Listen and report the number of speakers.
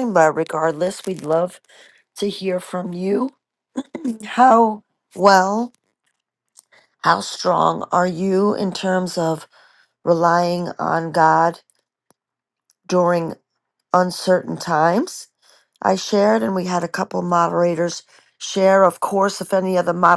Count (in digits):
1